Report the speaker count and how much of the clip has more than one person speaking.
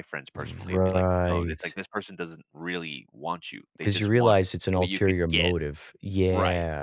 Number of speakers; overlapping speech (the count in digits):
2, about 40%